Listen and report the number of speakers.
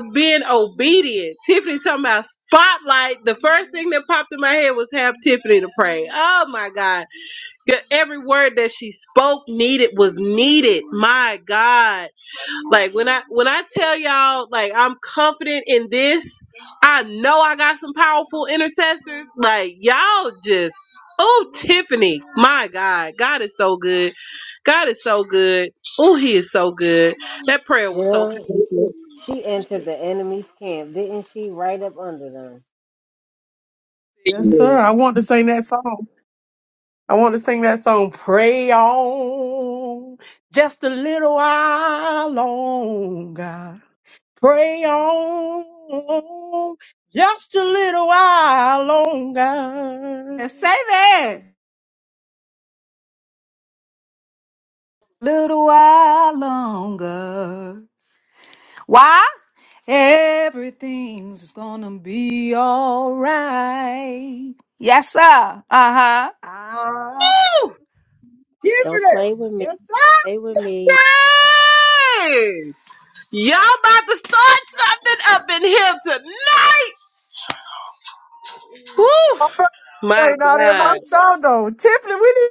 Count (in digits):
5